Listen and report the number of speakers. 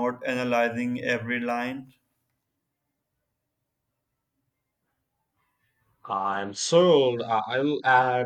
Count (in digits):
2